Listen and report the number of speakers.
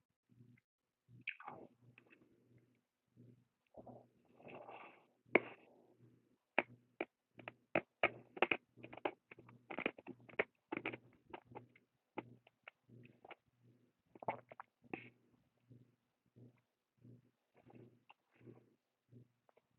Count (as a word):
zero